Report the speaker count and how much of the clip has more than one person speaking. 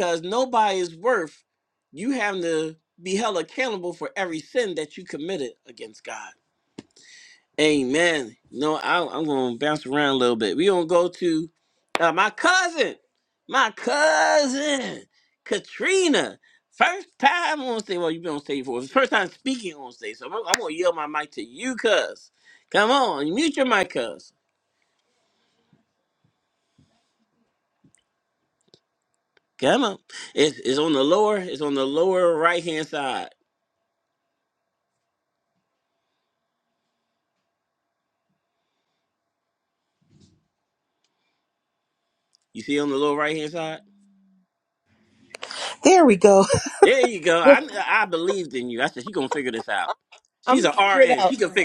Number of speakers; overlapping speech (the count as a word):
two, about 2%